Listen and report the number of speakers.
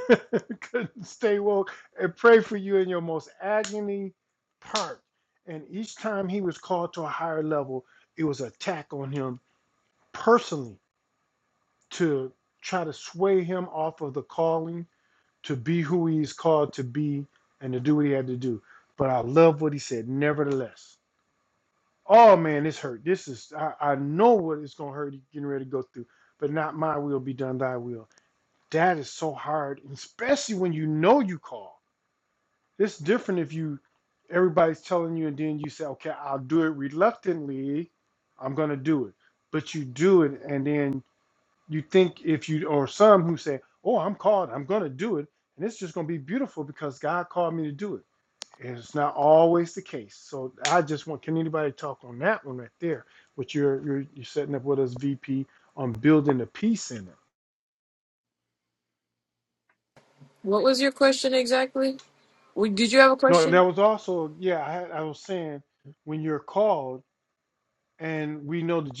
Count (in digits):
2